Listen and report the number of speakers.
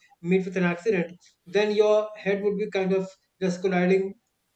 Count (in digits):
1